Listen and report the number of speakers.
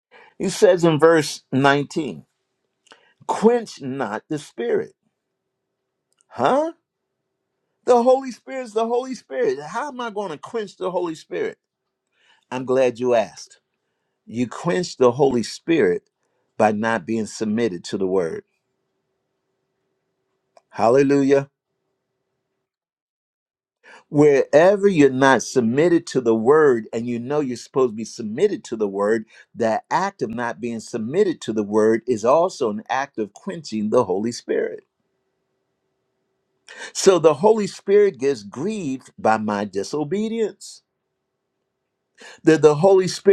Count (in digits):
1